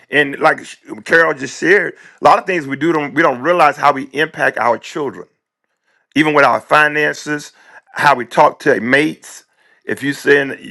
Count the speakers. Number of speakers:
1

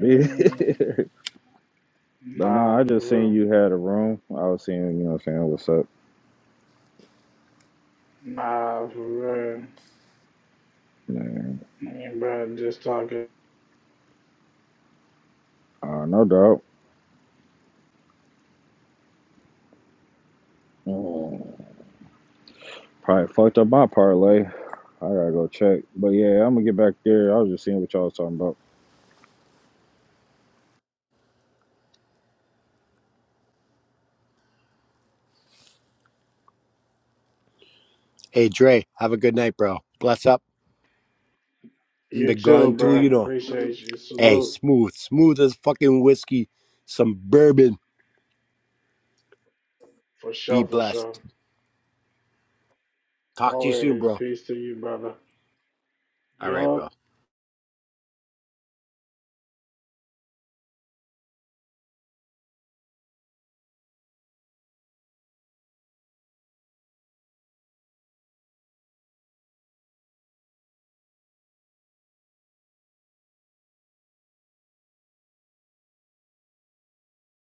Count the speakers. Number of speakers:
3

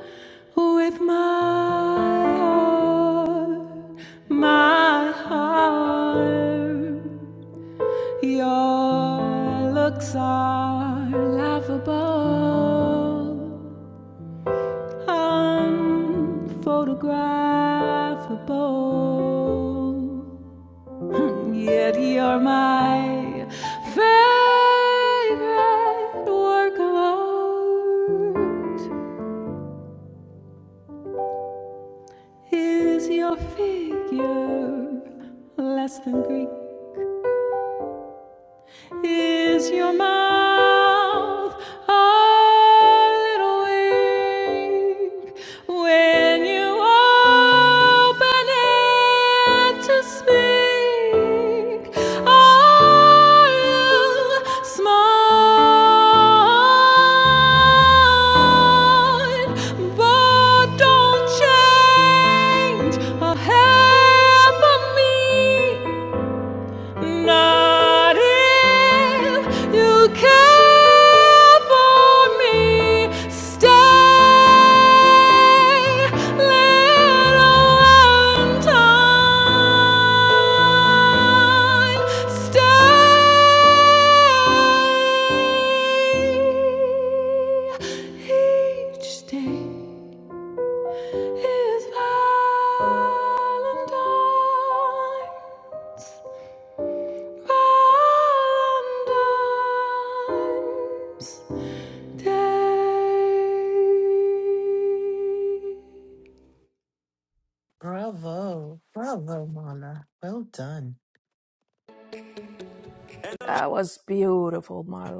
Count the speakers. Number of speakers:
3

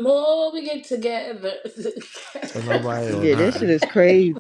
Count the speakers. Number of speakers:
3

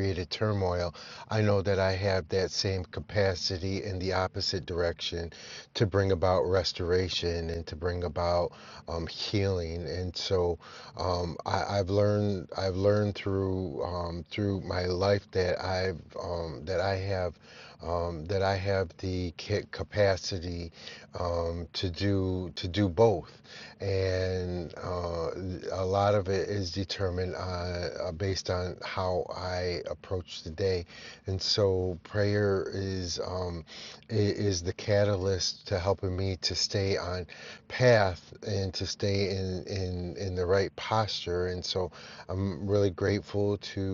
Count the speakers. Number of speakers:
1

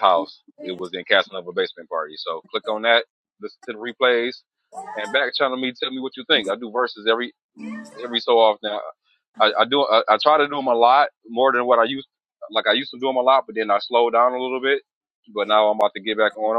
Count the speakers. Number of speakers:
1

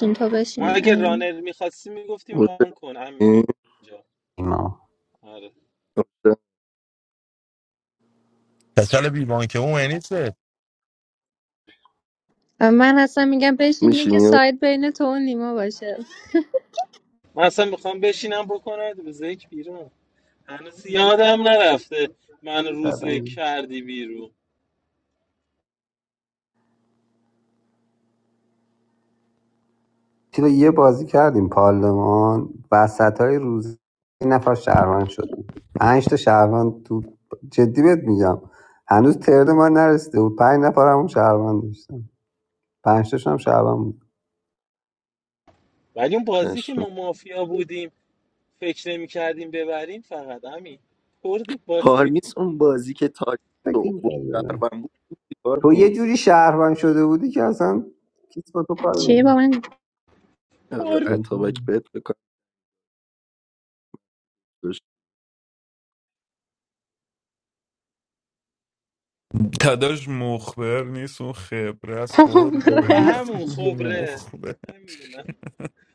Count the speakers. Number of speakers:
6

